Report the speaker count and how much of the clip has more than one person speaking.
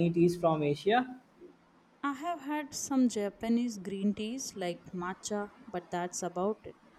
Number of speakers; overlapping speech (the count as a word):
two, no overlap